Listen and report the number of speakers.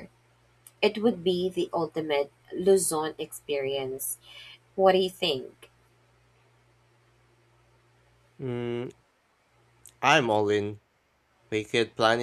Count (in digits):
2